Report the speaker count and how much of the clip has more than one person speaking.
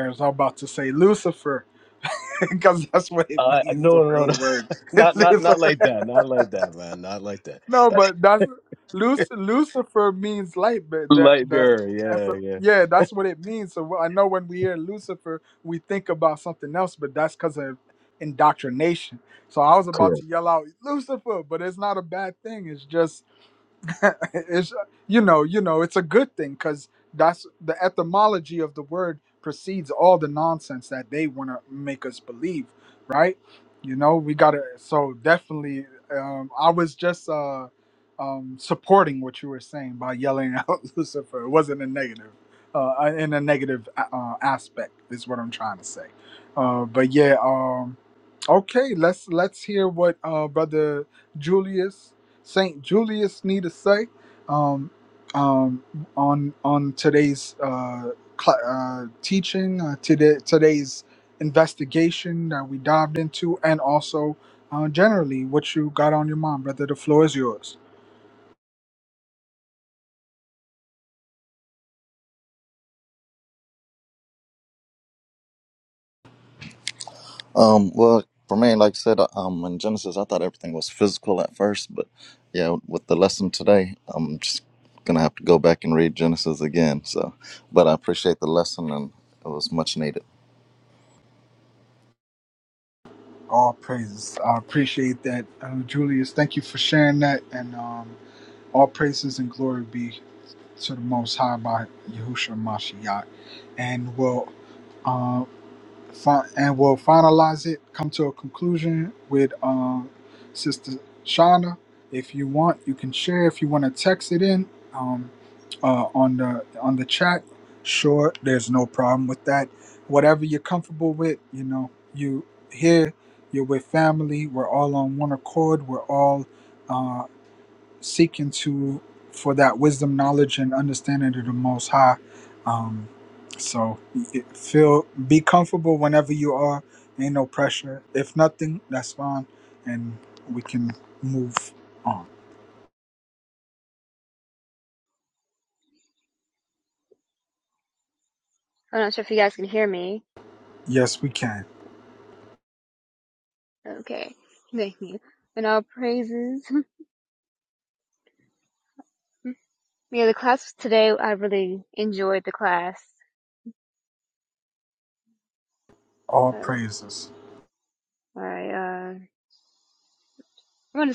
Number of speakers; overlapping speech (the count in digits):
4, about 1%